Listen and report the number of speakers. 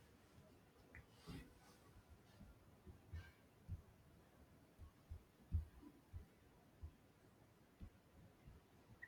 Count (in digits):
0